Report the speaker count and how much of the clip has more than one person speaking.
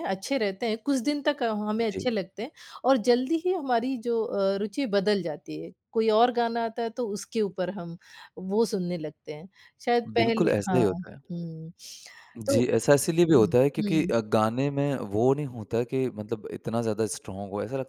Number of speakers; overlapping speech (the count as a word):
two, about 10%